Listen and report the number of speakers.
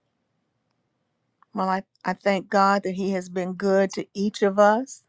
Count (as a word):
one